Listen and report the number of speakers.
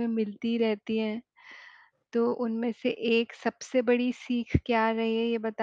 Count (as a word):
one